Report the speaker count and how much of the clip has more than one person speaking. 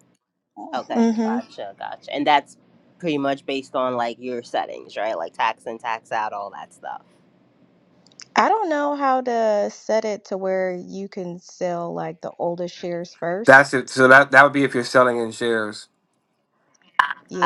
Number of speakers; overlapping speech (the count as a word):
three, about 3%